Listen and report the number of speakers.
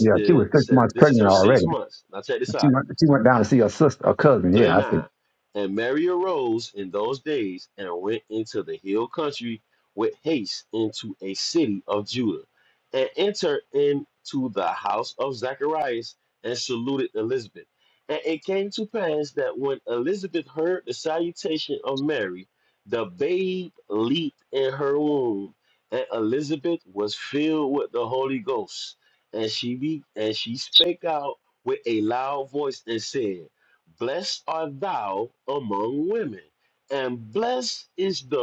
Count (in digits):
2